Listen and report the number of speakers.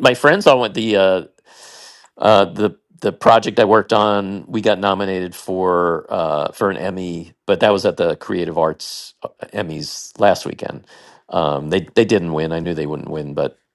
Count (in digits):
1